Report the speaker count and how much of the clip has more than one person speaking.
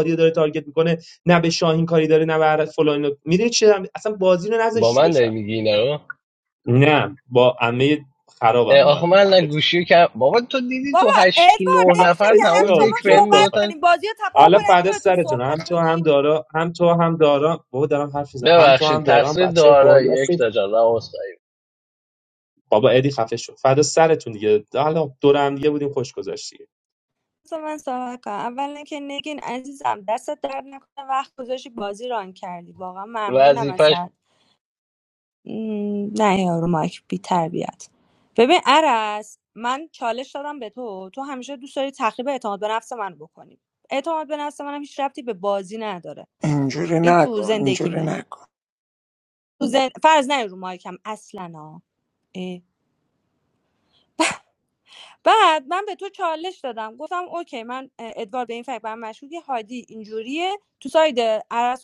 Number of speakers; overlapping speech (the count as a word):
four, about 14%